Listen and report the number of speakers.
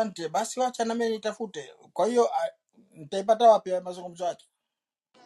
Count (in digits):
1